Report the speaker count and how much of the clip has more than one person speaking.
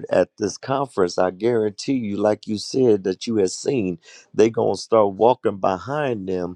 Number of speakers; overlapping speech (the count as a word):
one, no overlap